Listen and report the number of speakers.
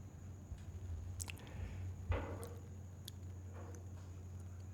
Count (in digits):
0